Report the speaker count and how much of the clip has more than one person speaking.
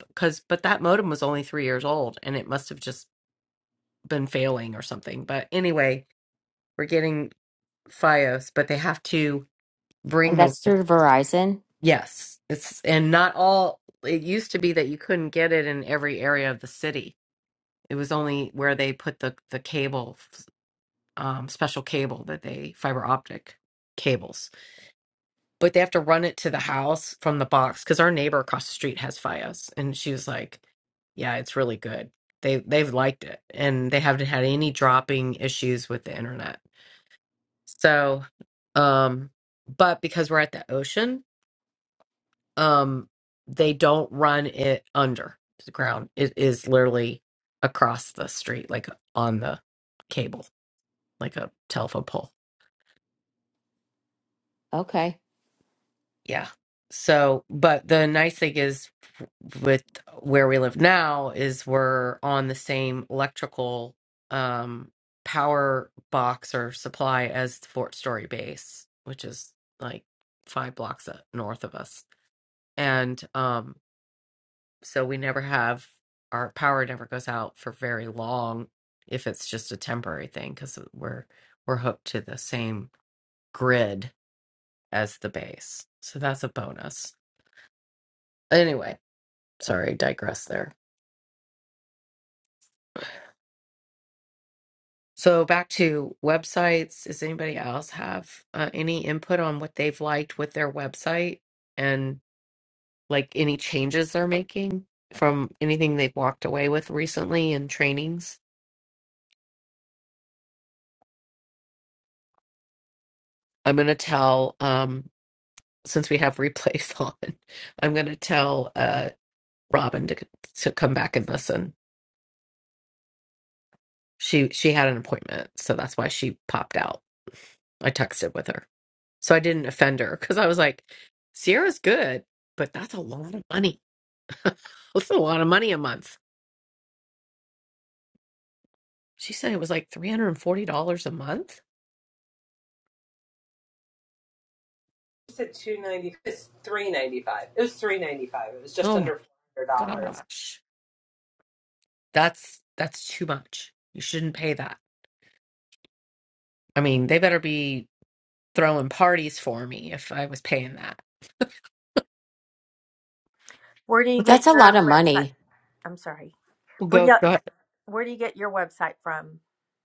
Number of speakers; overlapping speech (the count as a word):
four, about 1%